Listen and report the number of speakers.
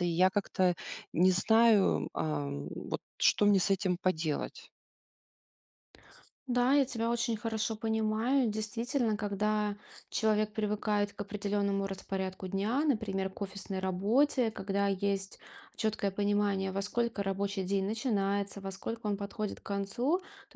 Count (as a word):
two